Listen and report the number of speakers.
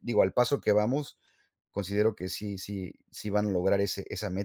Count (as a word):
one